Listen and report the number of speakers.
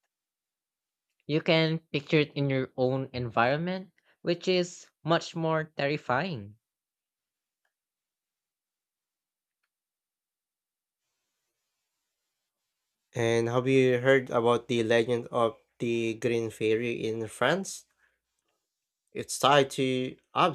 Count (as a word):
two